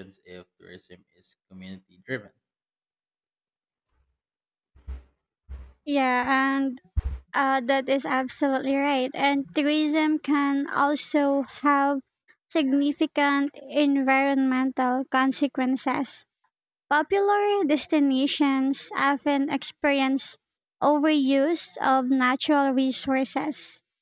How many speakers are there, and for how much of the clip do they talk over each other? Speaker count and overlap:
two, no overlap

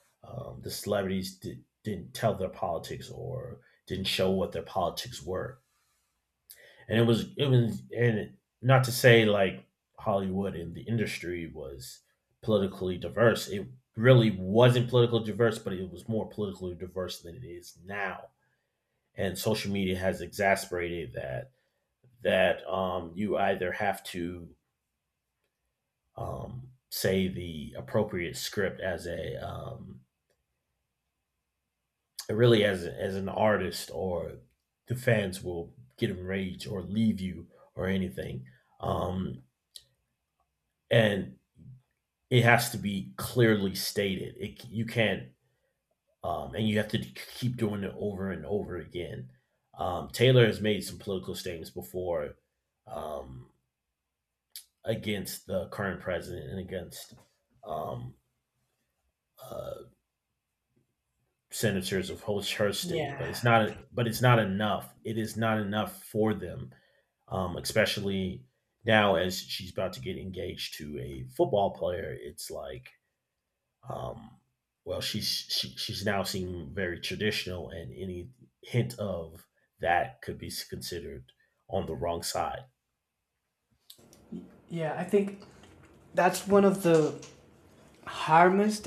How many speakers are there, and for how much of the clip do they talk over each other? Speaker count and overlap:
two, about 1%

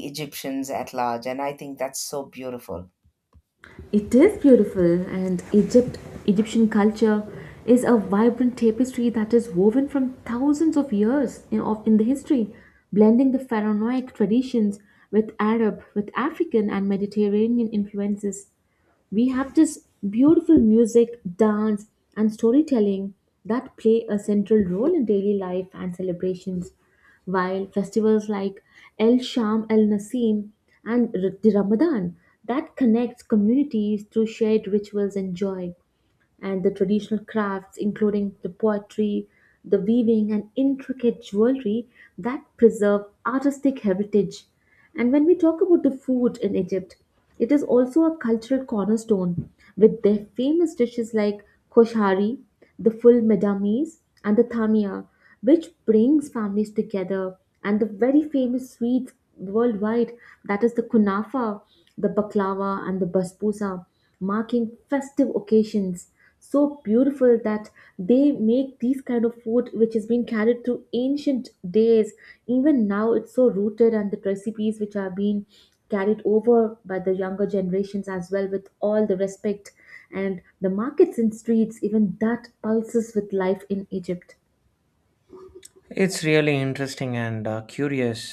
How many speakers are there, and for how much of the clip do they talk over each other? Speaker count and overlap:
three, no overlap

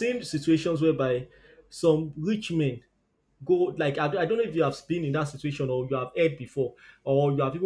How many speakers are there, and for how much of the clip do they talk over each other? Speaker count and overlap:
one, no overlap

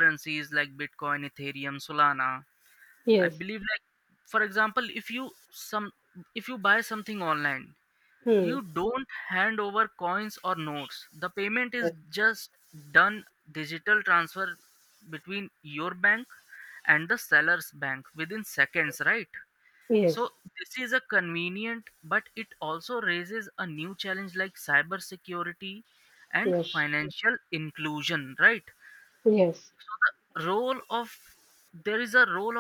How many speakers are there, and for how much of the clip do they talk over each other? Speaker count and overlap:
two, about 2%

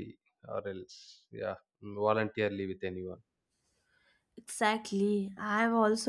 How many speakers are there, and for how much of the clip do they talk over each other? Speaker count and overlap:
two, no overlap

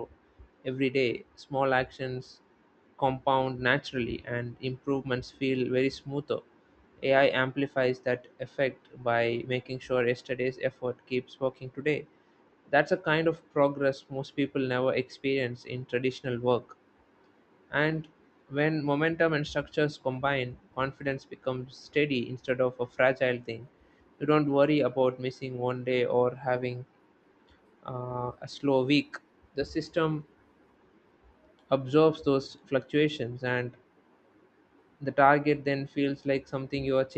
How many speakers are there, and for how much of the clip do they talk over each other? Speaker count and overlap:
one, no overlap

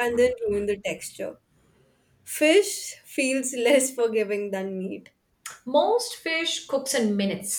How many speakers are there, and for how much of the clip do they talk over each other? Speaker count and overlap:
two, no overlap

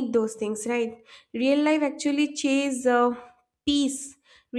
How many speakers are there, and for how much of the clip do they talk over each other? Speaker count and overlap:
one, no overlap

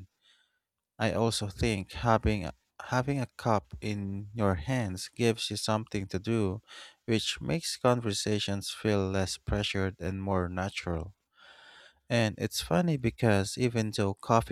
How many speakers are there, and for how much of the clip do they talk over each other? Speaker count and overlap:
one, no overlap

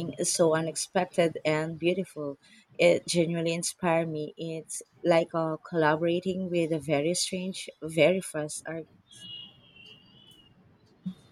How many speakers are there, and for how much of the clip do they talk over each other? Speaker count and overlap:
one, no overlap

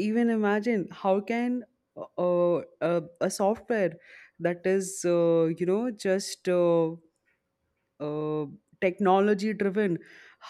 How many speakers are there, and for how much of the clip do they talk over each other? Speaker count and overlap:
one, no overlap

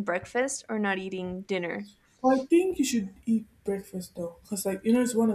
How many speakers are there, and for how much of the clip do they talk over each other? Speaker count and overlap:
two, no overlap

